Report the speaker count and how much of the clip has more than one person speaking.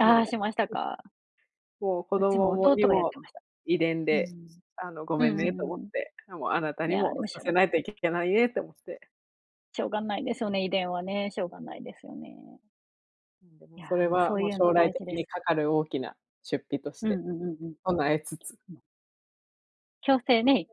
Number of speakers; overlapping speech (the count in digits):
2, about 21%